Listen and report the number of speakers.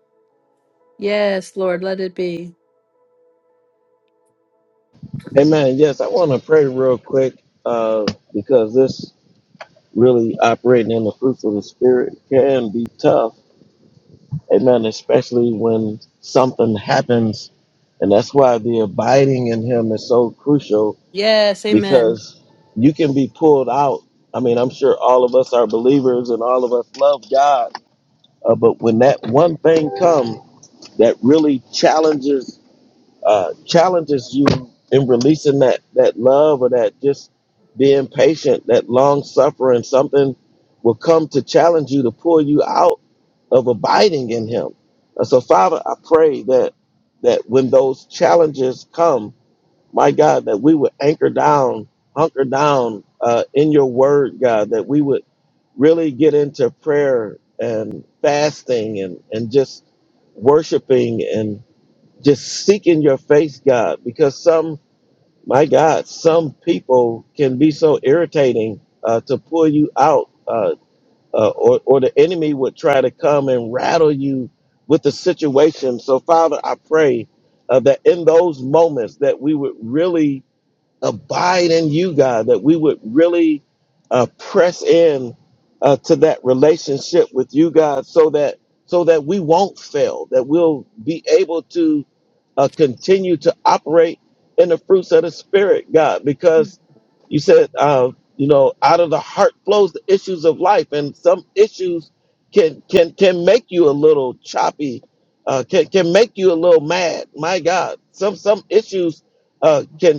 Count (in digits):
2